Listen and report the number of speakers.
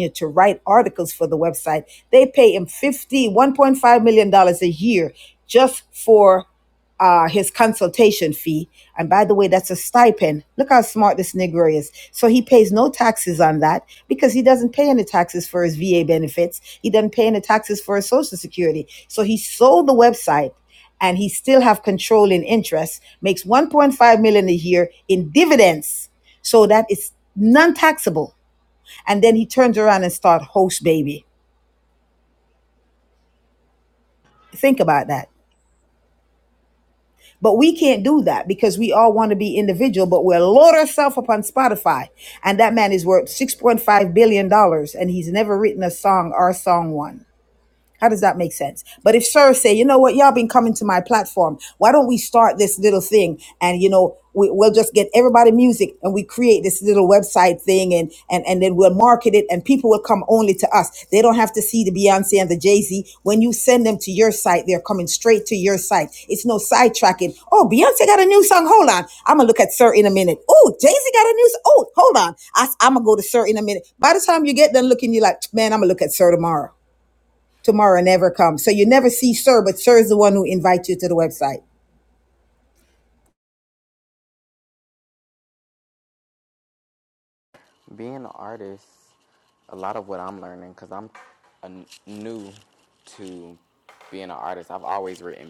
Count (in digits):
2